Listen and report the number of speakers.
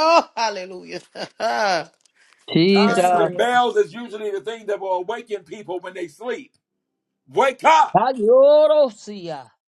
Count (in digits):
3